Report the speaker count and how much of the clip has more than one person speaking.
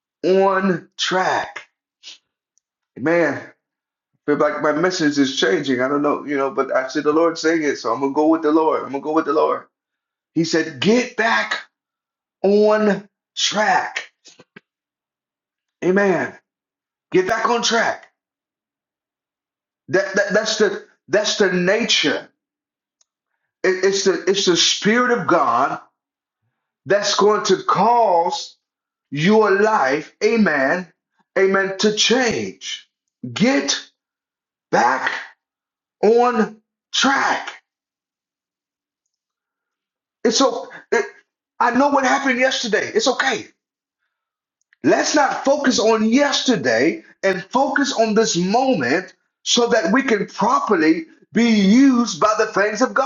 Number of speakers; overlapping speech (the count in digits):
1, no overlap